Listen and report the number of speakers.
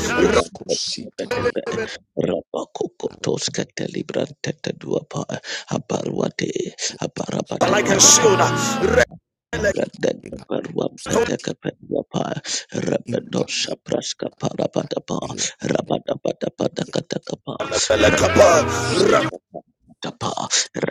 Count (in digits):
3